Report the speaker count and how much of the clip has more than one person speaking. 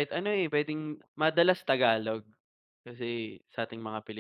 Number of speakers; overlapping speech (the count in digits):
1, no overlap